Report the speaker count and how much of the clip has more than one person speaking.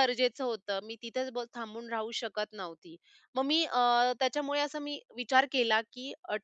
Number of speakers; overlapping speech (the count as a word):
one, no overlap